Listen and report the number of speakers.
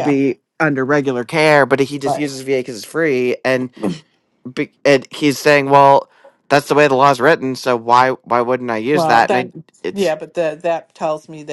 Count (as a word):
two